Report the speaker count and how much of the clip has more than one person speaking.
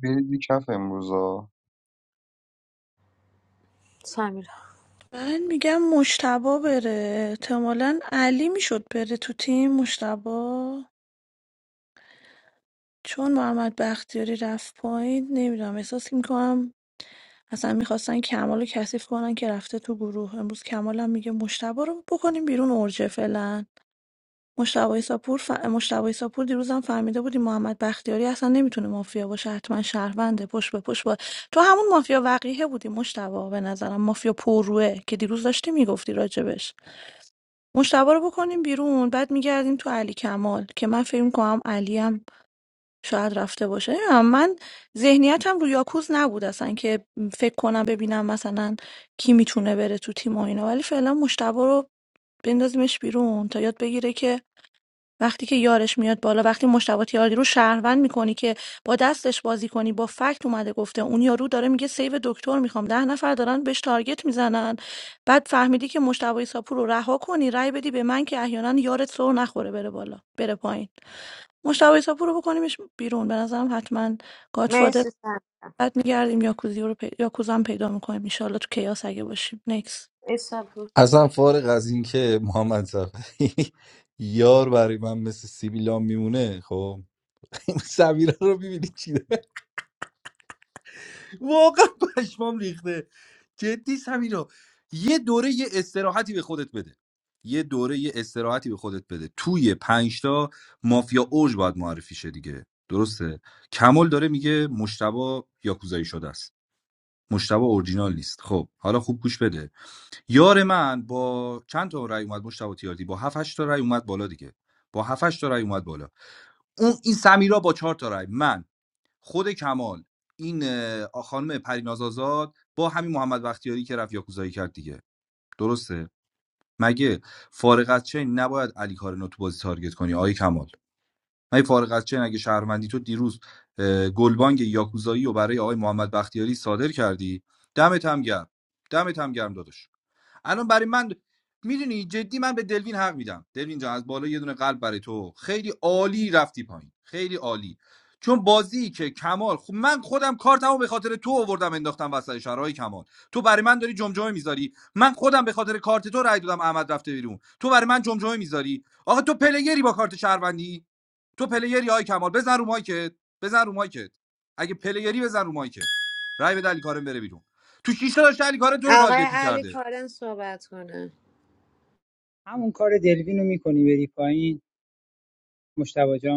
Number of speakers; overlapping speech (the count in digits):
5, about 1%